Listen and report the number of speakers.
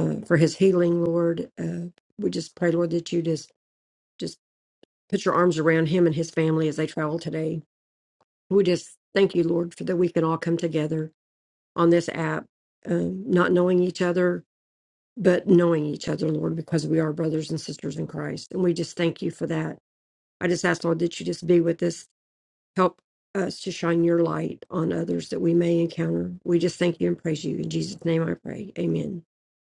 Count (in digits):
1